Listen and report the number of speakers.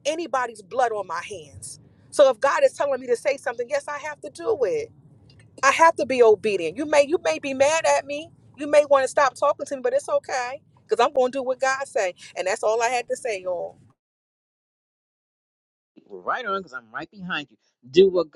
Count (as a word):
two